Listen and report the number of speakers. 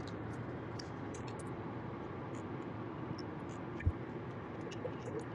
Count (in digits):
0